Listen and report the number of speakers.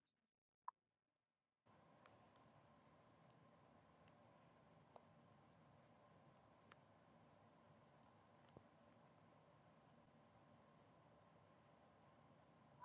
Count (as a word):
zero